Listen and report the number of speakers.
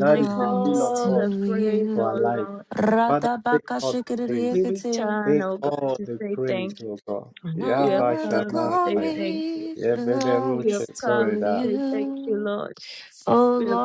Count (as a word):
three